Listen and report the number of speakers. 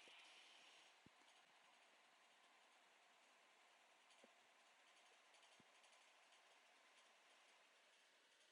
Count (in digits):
0